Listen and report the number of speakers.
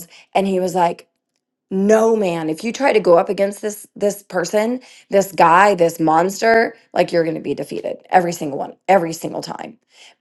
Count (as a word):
one